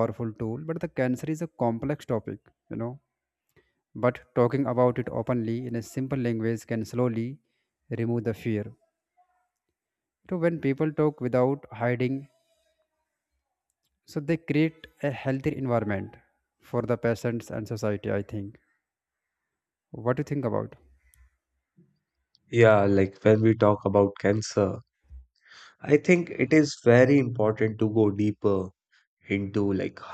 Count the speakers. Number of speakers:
2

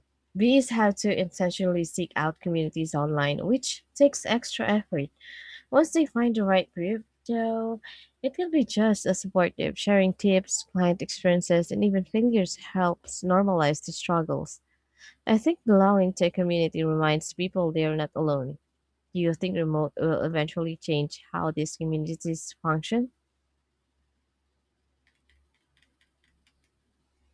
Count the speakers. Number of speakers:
1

